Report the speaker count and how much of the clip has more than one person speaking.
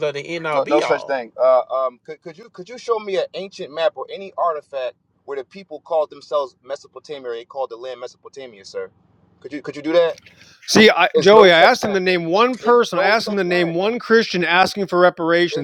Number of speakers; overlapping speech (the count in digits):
3, about 17%